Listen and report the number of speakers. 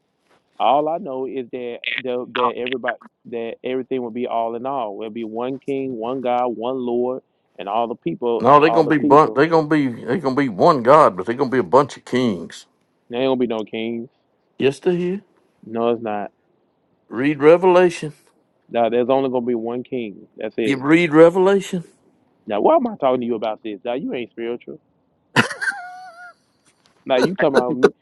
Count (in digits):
2